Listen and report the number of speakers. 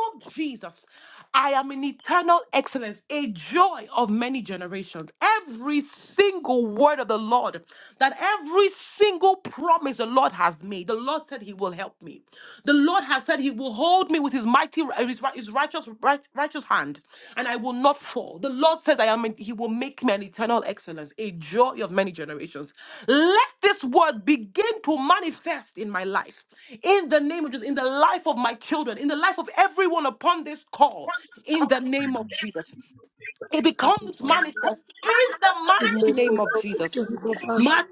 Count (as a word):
two